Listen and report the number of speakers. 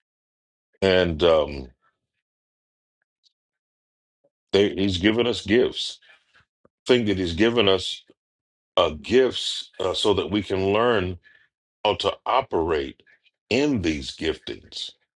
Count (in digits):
1